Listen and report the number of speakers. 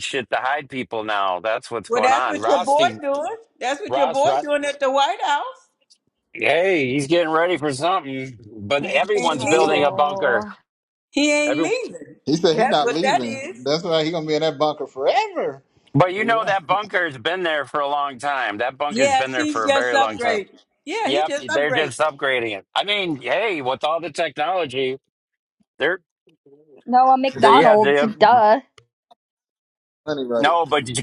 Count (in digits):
4